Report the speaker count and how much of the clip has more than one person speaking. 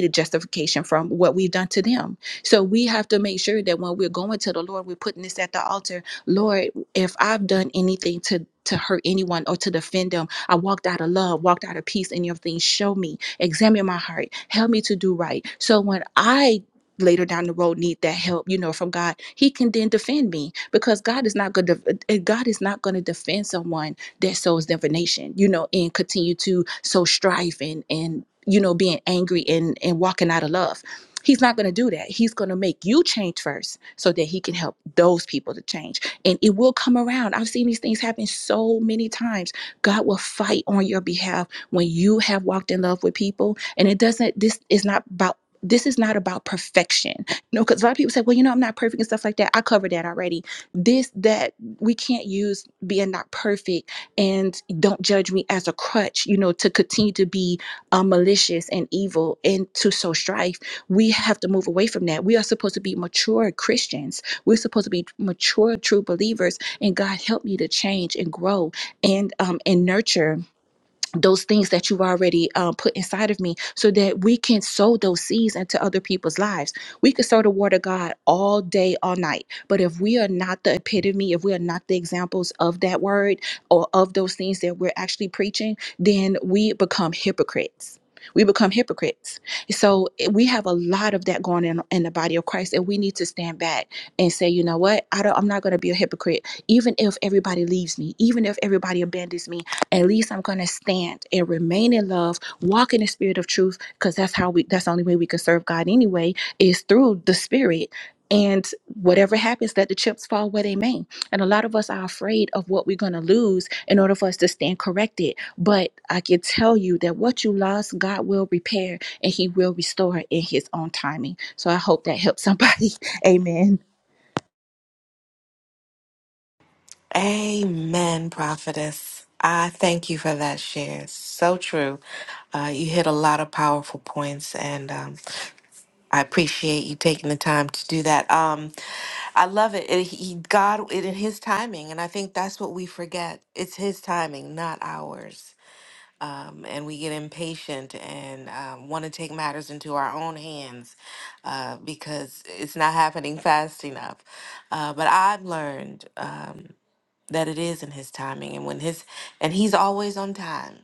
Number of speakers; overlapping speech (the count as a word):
two, no overlap